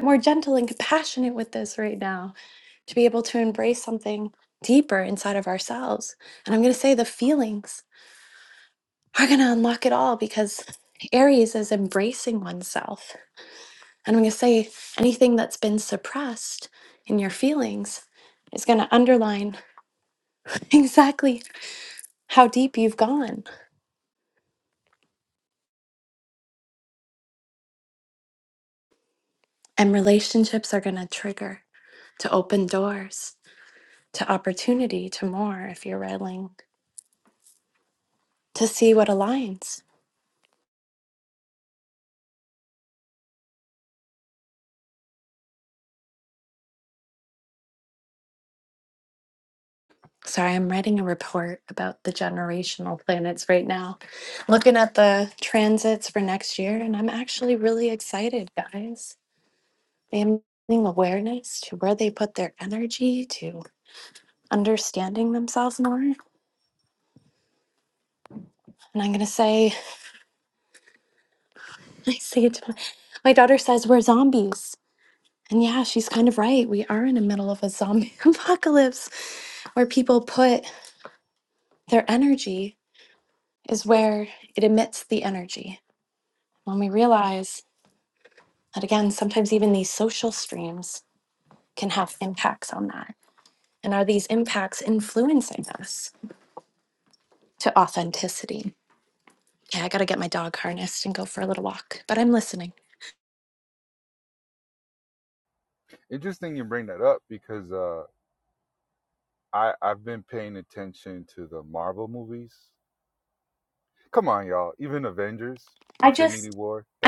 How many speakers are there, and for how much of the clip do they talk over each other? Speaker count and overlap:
2, under 1%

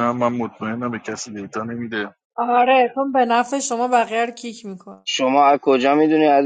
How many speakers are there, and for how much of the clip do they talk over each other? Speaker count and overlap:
3, no overlap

